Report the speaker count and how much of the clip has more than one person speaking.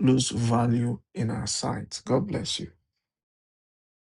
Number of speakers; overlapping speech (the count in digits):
1, no overlap